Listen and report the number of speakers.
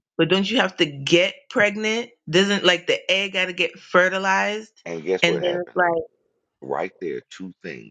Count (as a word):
two